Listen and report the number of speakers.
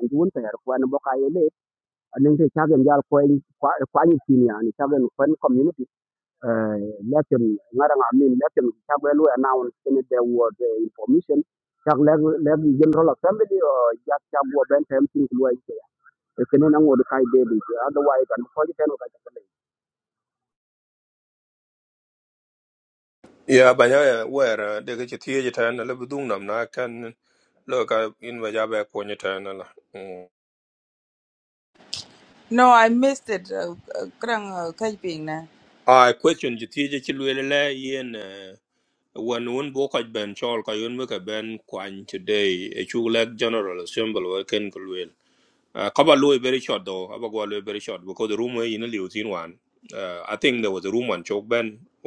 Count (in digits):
3